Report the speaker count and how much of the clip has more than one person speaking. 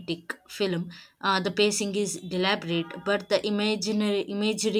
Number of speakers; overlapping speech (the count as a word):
one, no overlap